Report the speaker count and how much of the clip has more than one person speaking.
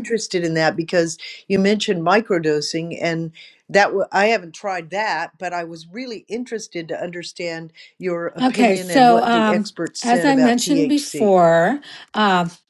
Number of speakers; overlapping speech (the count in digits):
2, about 20%